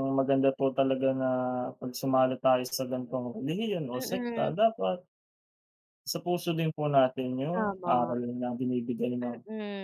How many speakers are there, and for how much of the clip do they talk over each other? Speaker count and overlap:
two, about 12%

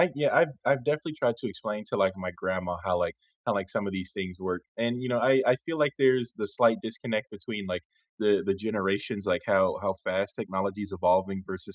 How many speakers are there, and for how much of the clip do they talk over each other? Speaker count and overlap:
one, no overlap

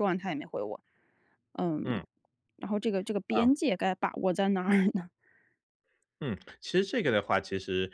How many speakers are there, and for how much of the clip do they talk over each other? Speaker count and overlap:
two, about 2%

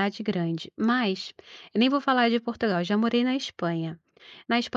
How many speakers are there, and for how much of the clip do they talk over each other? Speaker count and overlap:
one, no overlap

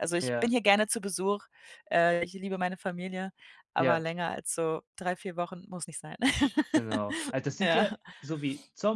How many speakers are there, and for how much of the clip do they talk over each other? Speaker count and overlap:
two, about 9%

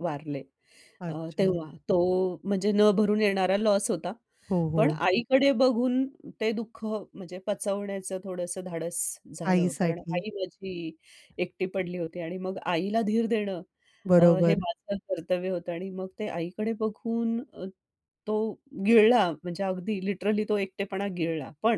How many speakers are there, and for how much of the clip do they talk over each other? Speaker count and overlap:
two, about 9%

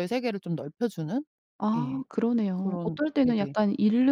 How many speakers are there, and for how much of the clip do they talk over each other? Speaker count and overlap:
two, about 27%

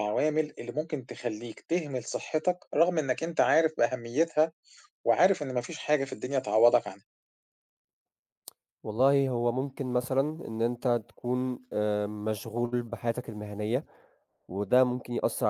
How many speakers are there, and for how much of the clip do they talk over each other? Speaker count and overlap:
two, no overlap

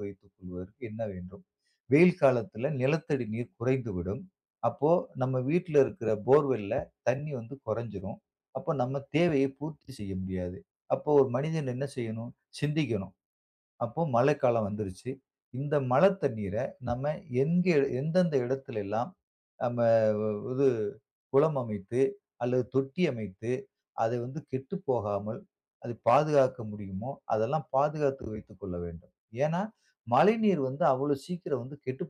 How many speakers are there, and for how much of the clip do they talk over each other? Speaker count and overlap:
one, no overlap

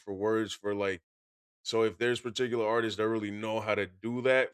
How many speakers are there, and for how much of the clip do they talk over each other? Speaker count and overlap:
one, no overlap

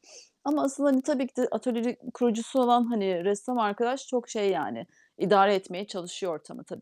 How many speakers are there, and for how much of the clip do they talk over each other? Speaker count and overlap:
one, no overlap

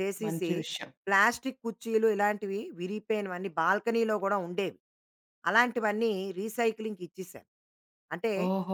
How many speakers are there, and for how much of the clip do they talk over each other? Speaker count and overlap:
two, about 4%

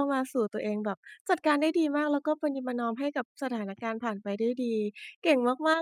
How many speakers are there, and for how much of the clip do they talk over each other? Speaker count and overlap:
one, no overlap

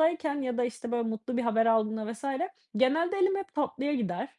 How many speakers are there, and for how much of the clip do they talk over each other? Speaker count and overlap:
one, no overlap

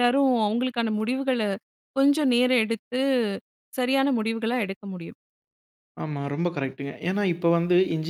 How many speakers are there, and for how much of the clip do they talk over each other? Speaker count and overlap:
two, no overlap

